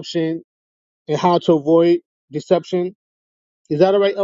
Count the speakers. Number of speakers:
1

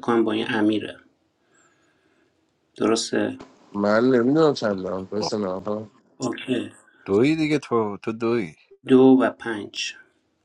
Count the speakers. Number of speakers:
3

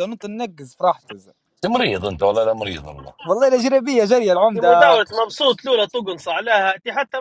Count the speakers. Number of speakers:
3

